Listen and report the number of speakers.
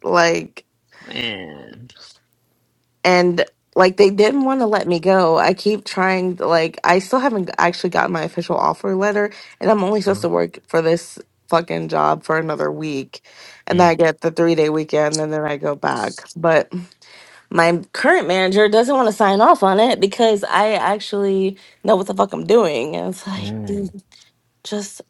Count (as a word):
two